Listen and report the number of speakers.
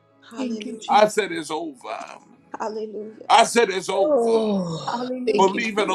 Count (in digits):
3